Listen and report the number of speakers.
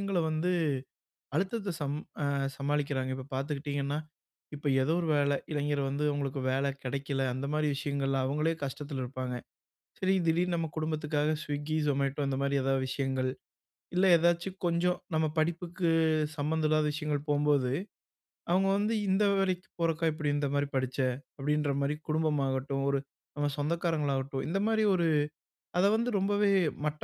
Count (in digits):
1